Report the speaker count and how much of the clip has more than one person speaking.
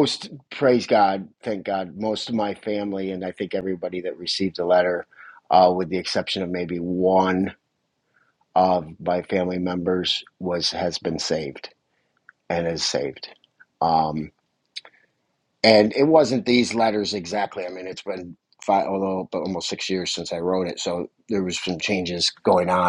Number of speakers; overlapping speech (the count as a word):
one, no overlap